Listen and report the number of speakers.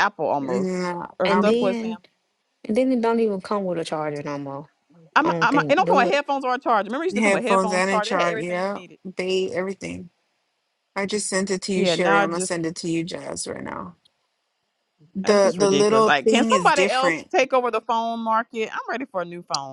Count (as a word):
three